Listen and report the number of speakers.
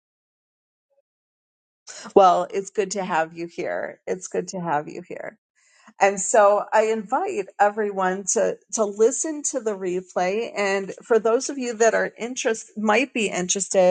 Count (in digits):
1